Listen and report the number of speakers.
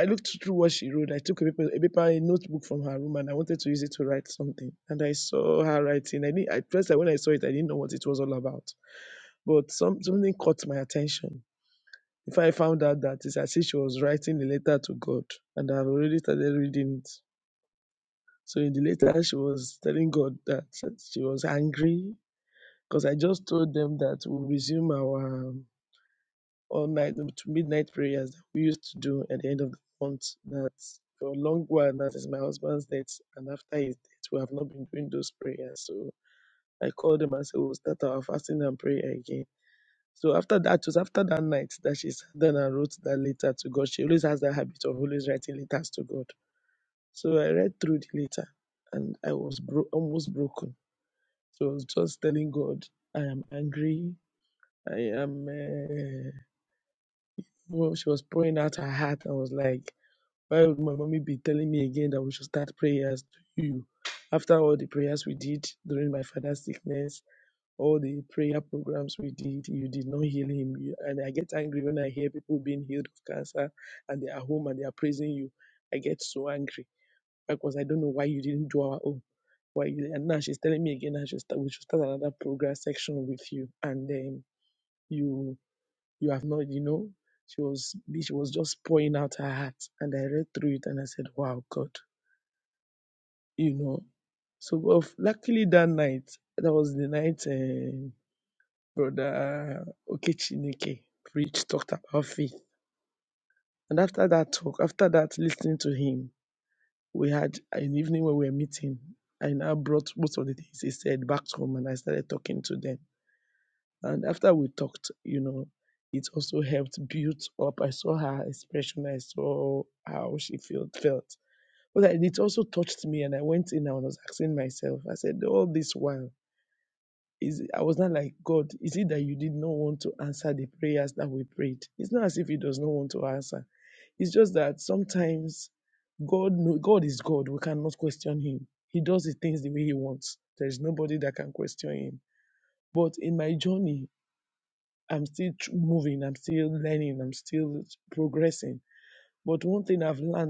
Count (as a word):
one